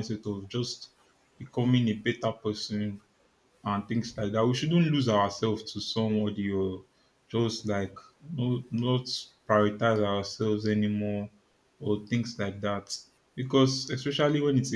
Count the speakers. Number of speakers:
one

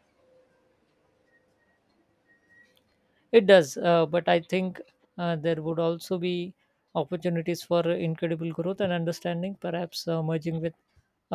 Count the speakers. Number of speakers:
one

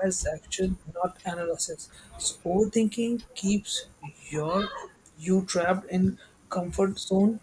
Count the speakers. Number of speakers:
one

